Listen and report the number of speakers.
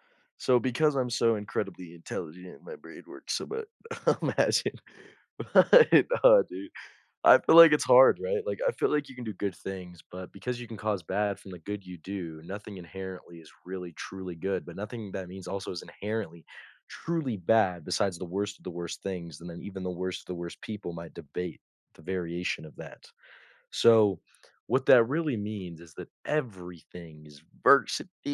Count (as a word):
one